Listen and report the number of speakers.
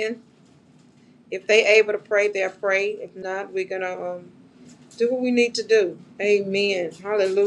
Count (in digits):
1